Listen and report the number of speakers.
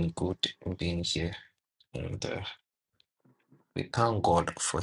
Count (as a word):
one